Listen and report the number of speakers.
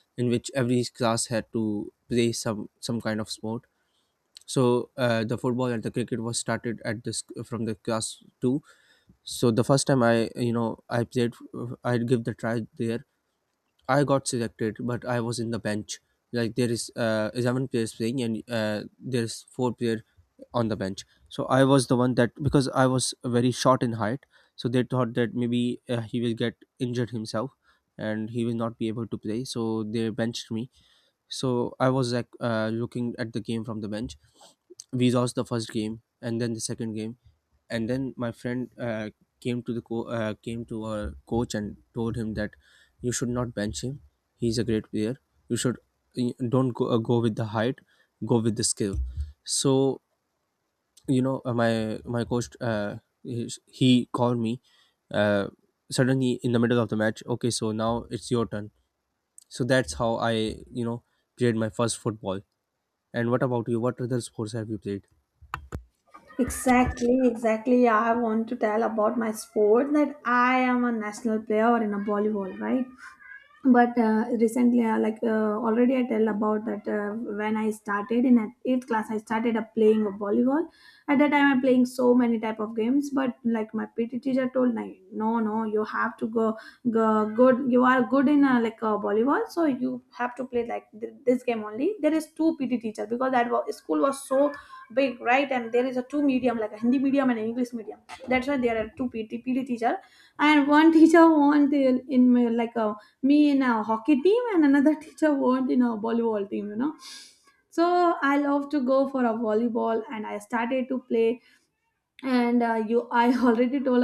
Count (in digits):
2